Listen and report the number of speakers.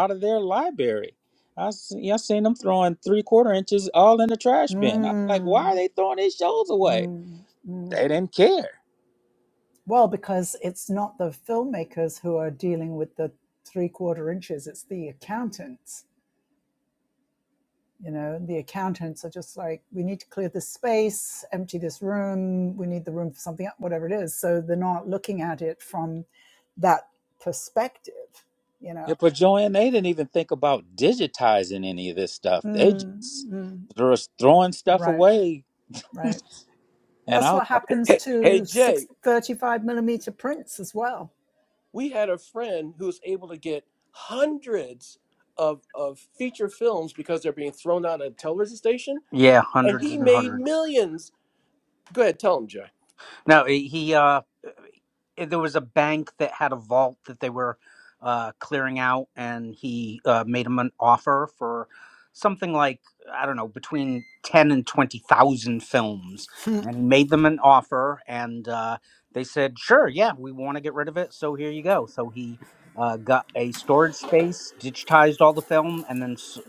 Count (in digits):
4